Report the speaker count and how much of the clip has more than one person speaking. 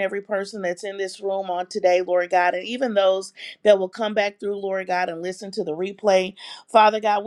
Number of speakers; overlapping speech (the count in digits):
1, no overlap